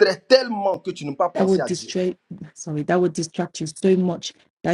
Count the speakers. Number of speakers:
2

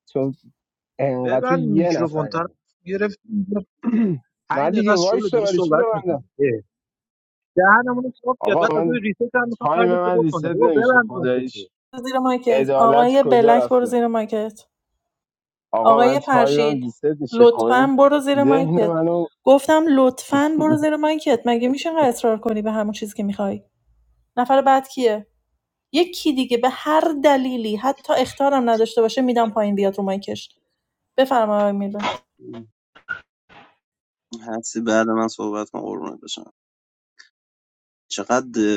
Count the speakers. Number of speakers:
4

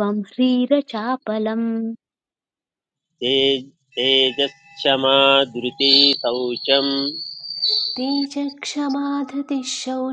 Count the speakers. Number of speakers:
3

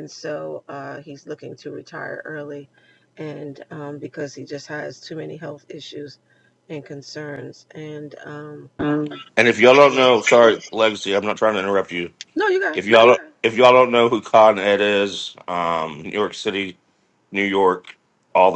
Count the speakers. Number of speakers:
2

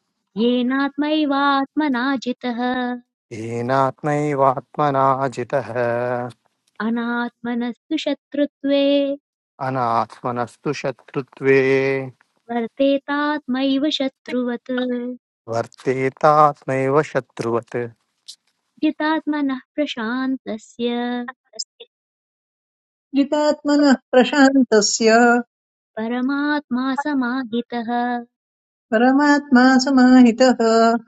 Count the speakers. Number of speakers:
3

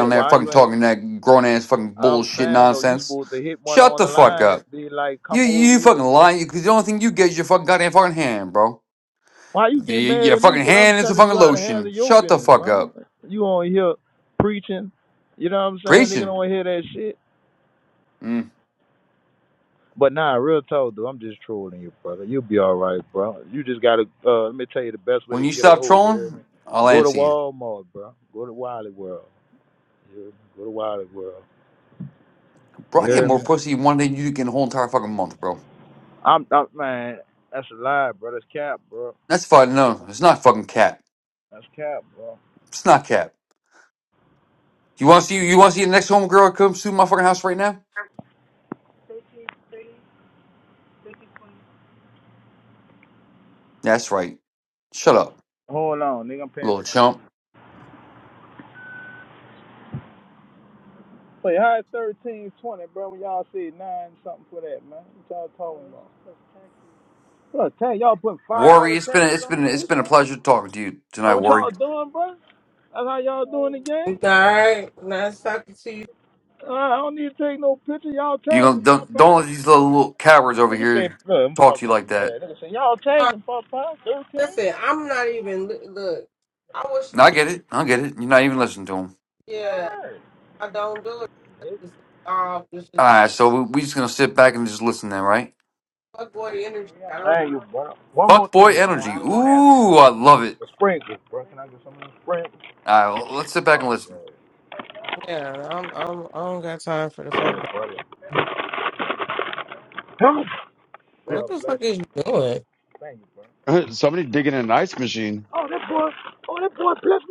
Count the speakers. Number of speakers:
4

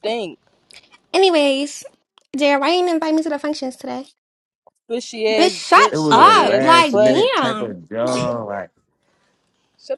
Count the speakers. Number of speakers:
3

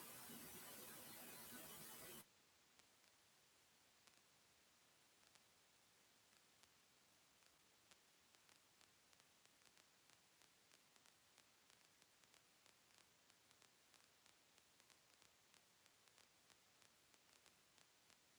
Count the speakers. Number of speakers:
0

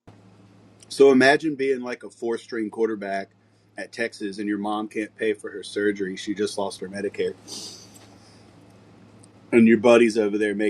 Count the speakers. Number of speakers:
1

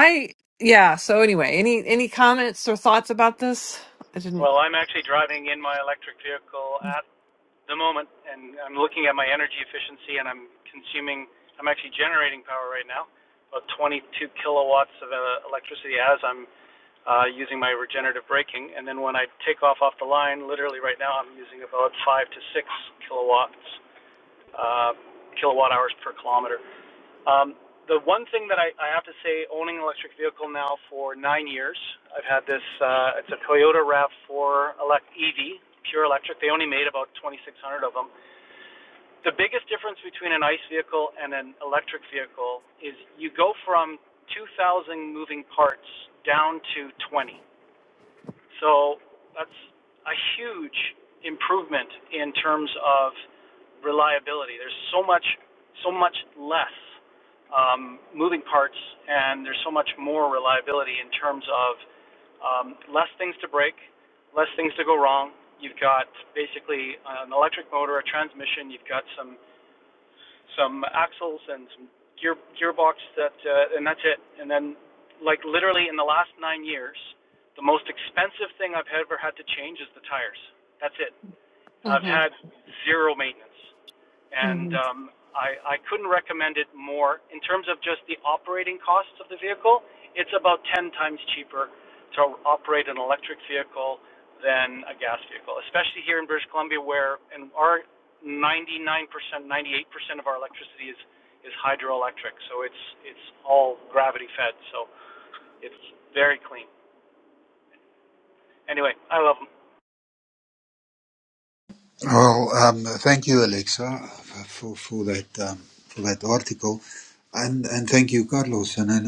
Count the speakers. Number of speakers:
3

